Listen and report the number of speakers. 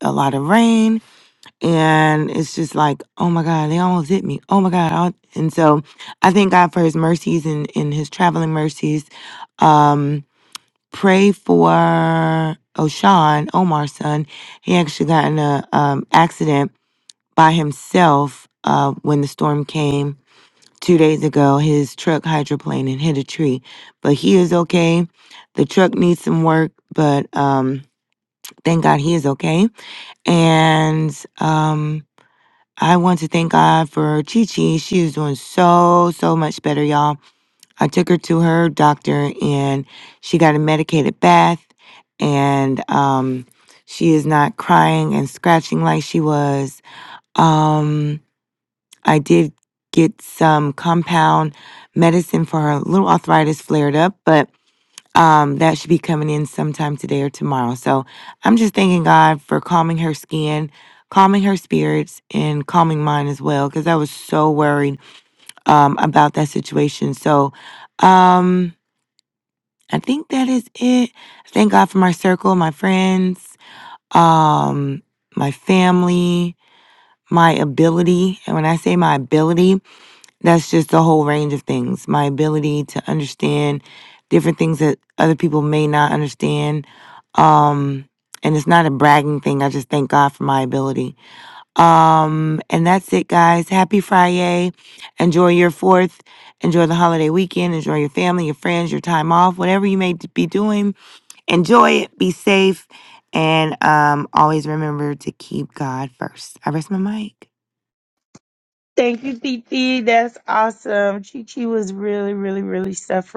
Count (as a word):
two